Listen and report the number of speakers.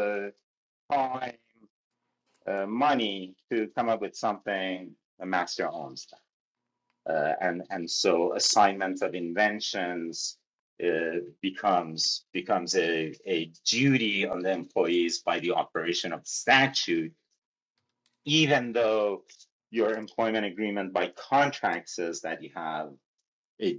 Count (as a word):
one